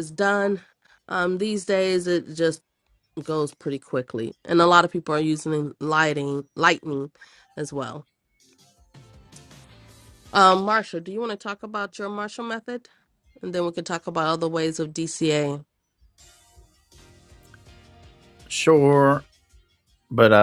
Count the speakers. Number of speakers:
2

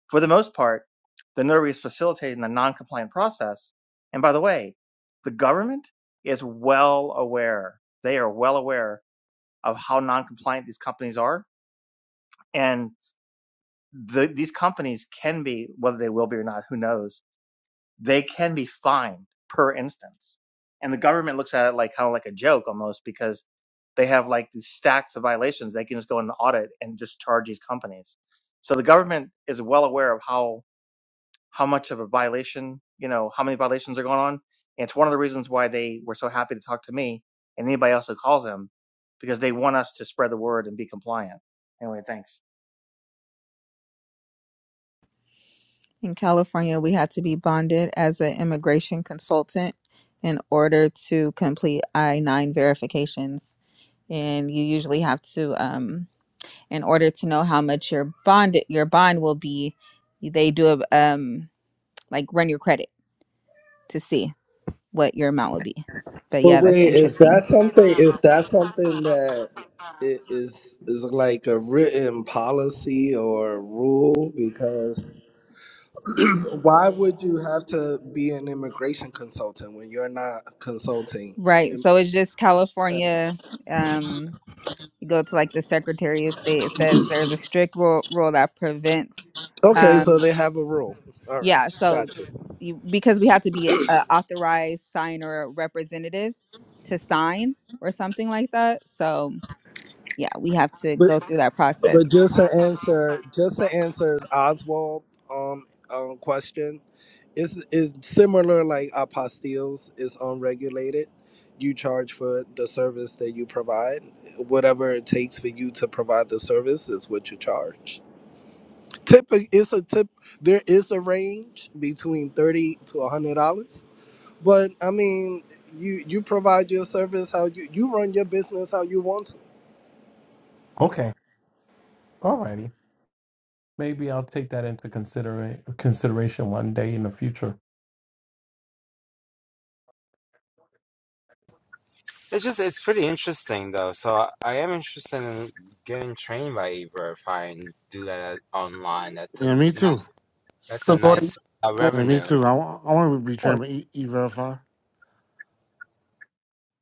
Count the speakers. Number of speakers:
6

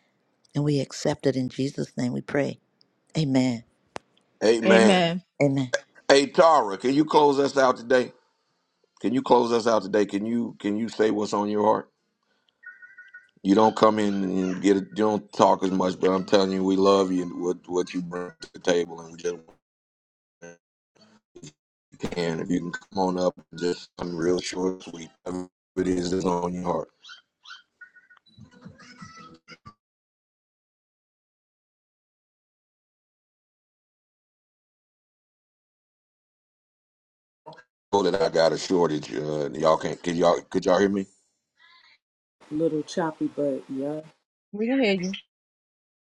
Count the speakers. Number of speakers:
4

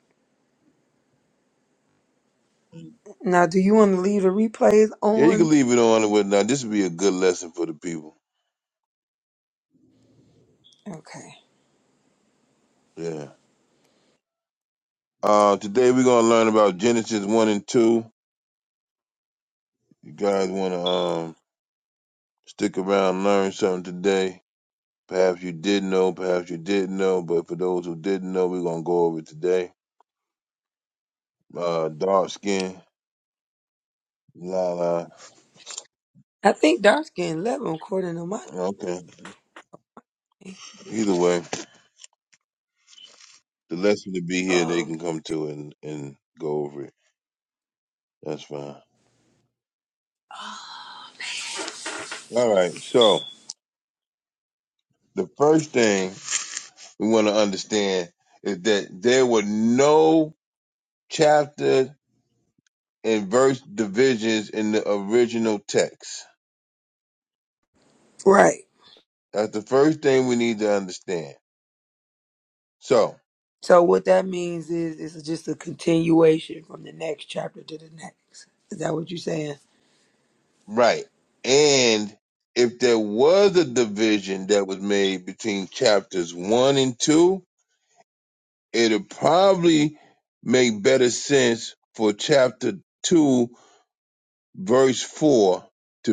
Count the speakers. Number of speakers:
2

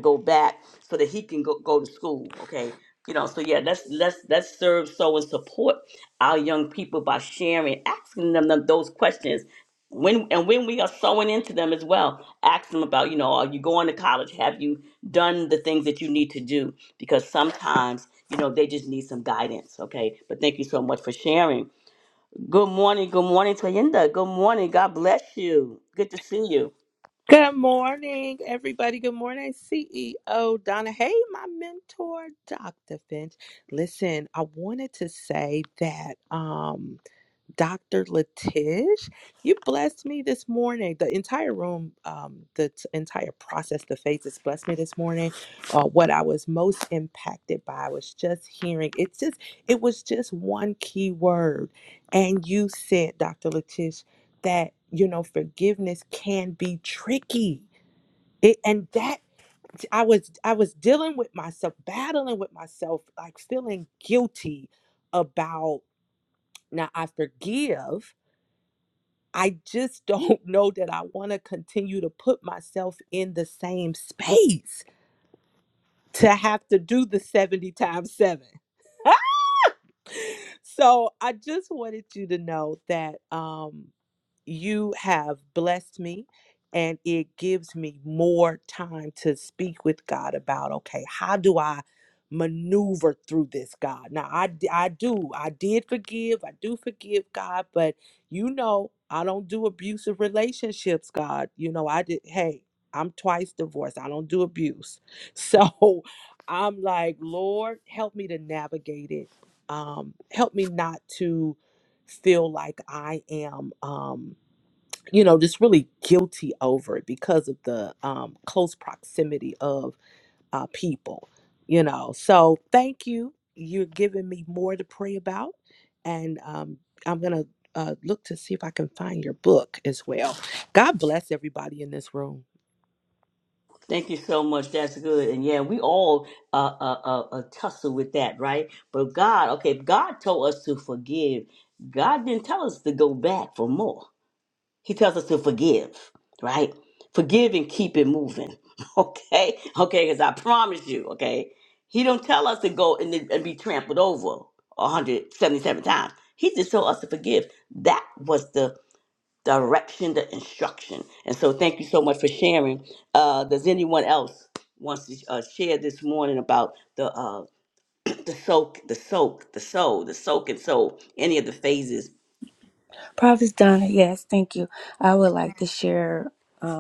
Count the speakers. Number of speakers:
3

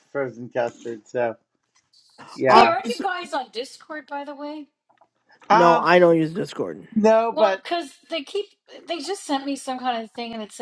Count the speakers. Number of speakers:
3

